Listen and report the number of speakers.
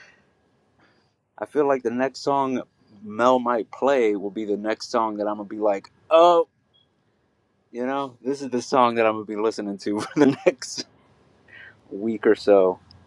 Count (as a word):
one